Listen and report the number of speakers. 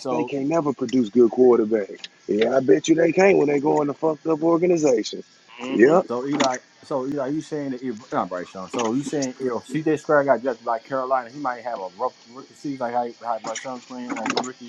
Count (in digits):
2